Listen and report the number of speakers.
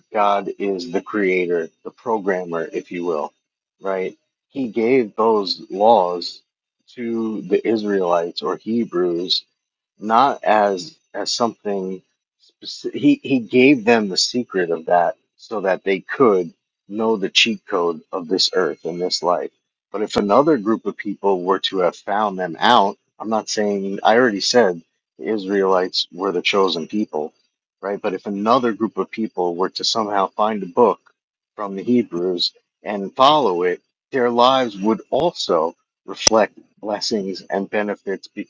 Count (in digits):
1